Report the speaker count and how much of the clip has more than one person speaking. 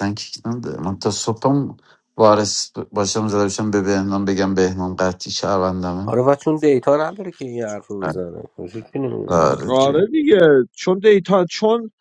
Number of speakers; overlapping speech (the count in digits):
3, about 4%